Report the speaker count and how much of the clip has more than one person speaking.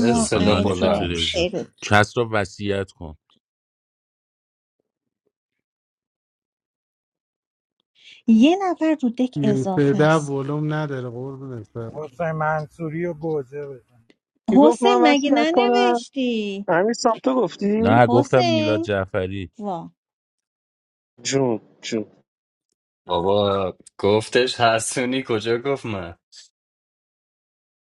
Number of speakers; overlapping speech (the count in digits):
6, about 14%